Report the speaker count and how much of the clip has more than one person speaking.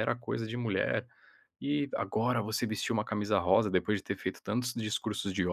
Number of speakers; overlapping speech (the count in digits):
1, no overlap